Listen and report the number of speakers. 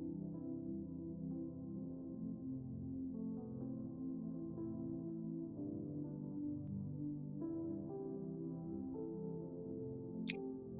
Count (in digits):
0